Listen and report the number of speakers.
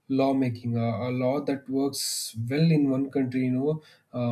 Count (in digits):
1